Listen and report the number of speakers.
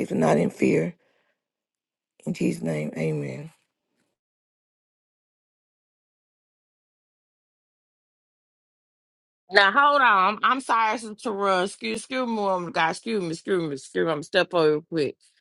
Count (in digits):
2